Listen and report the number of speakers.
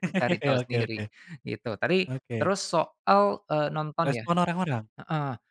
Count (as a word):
two